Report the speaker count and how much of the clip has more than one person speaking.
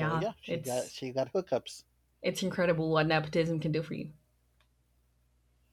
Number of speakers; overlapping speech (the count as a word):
two, about 11%